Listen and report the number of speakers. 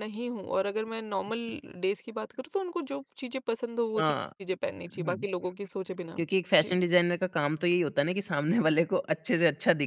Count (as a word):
two